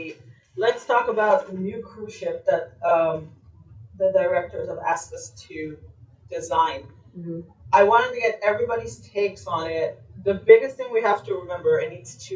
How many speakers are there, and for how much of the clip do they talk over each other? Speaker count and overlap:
1, no overlap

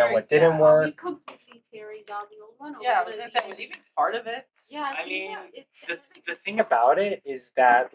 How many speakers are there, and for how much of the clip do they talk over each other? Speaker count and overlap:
3, about 57%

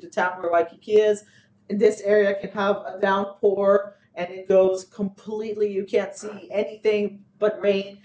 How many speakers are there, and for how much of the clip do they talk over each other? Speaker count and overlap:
1, no overlap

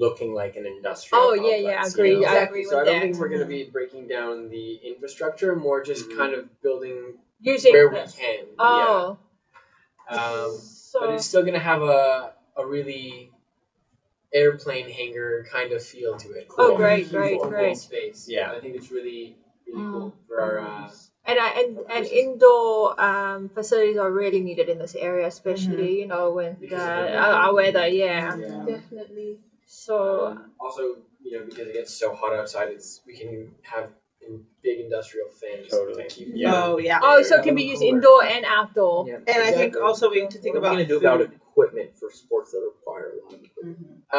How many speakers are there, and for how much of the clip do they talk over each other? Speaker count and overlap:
6, about 33%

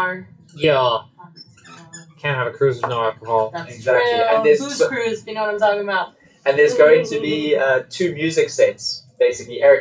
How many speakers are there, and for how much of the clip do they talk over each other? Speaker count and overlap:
3, about 13%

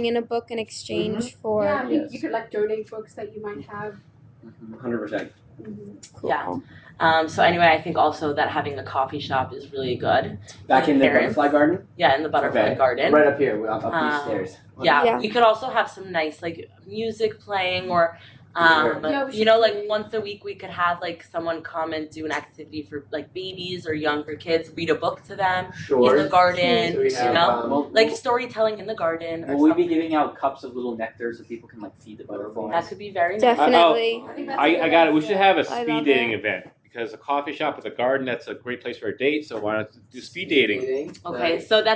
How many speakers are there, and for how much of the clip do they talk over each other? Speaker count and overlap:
6, about 31%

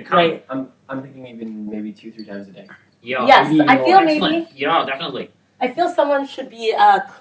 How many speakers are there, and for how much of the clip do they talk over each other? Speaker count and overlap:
3, about 21%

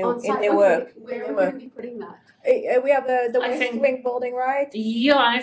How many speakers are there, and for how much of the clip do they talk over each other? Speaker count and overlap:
3, about 38%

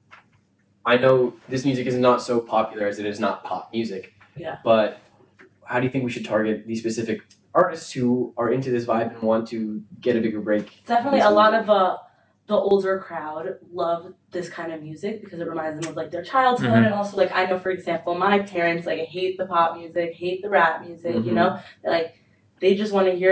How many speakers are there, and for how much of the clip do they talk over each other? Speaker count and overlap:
2, about 6%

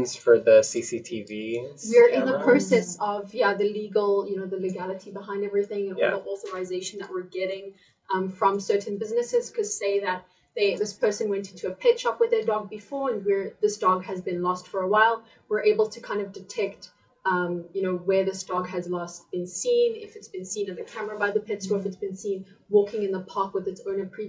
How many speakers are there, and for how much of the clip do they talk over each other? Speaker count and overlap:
2, about 5%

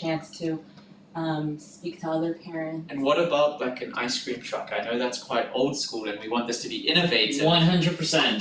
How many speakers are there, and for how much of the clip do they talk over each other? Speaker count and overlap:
3, about 7%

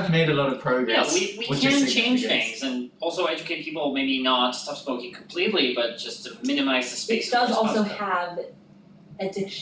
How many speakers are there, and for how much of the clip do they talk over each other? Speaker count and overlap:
3, about 21%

